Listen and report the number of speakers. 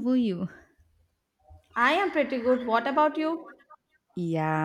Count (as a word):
two